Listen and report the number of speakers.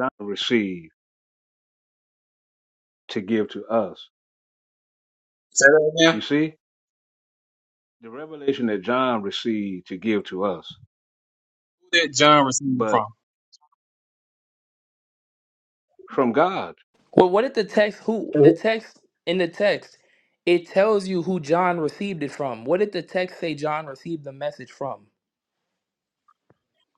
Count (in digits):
3